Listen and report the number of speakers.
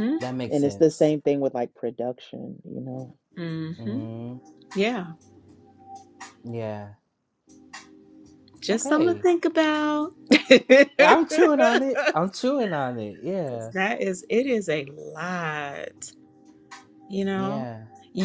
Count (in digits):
3